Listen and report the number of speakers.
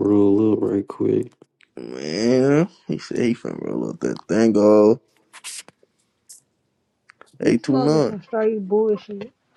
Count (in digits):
3